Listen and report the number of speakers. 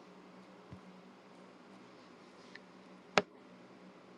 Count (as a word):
zero